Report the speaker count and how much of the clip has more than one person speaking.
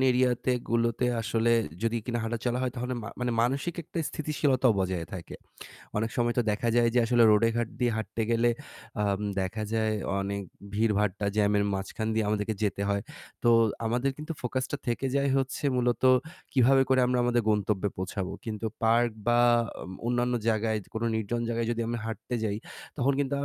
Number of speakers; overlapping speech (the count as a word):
one, no overlap